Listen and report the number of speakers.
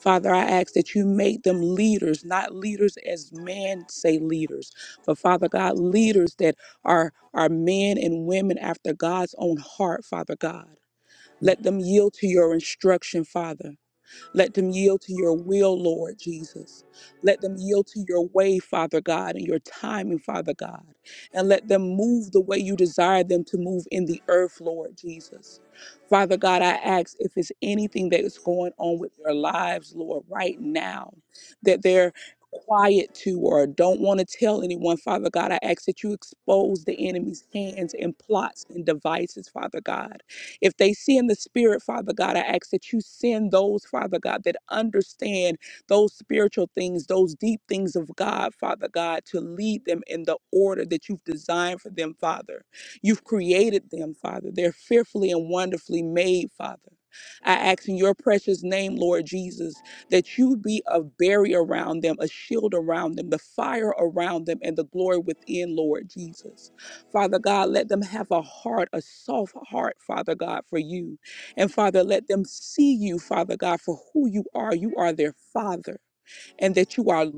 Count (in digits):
1